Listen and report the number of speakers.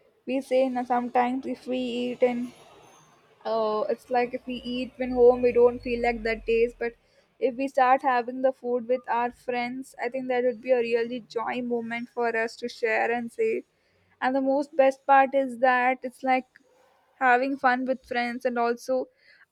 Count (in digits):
1